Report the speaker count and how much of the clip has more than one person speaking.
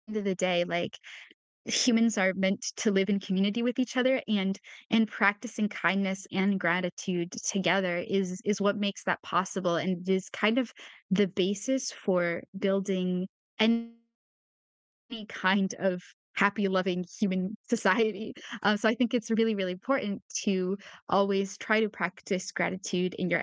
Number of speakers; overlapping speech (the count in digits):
1, no overlap